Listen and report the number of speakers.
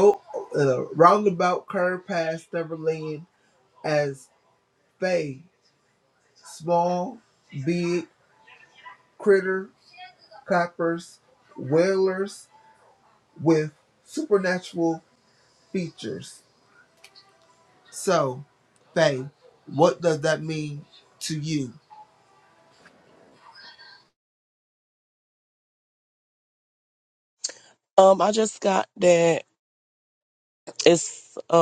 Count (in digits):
2